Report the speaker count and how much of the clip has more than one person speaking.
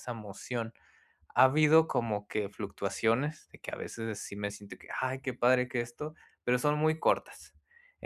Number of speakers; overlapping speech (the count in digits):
1, no overlap